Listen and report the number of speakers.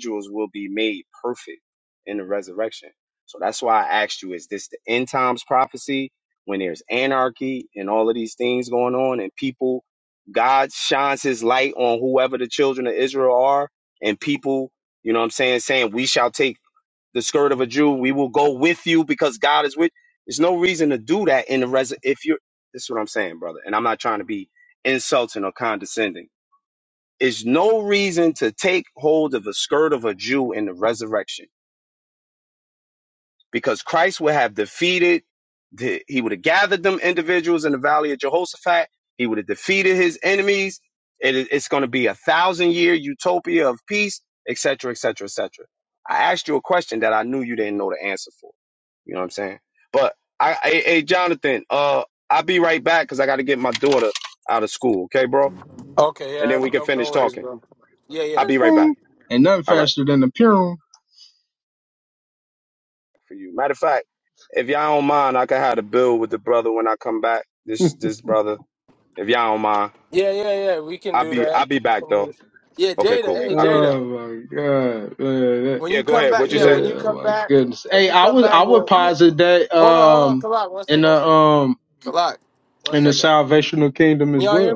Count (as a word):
three